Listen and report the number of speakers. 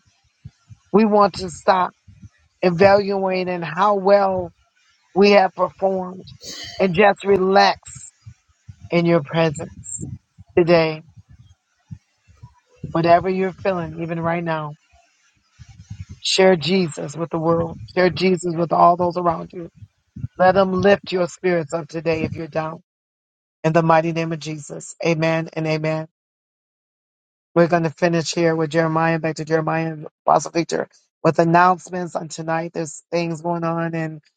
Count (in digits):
1